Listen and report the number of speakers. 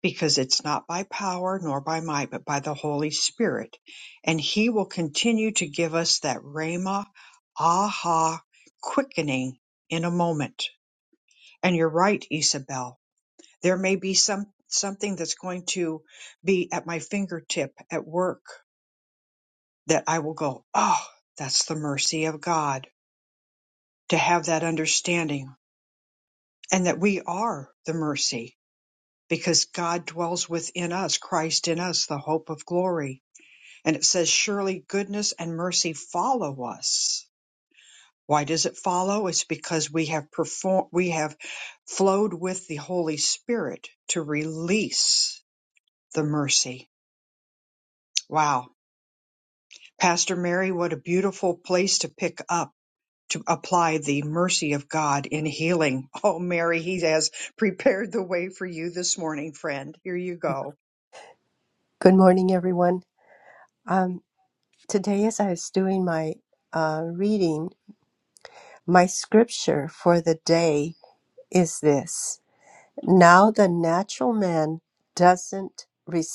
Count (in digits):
2